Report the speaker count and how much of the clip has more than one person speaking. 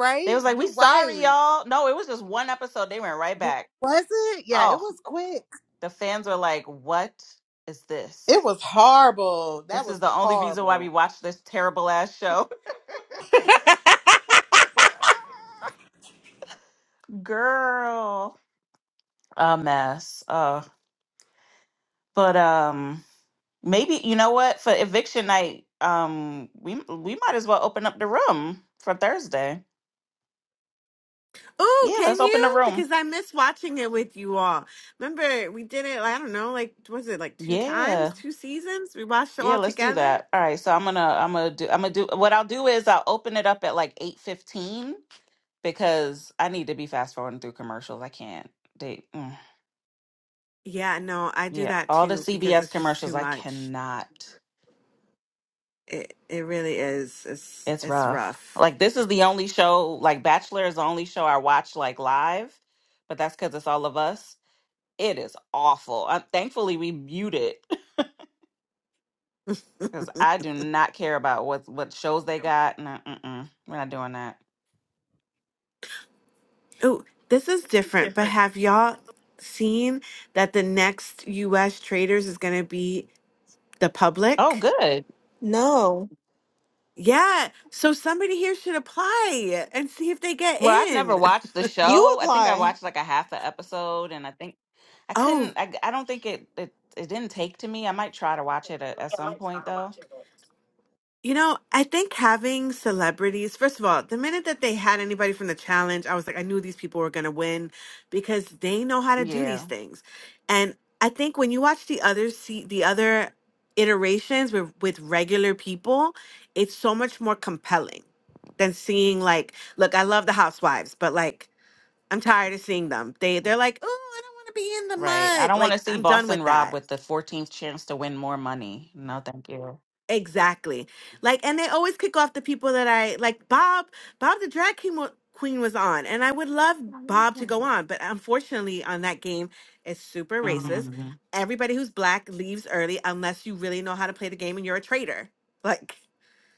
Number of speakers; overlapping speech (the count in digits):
4, about 8%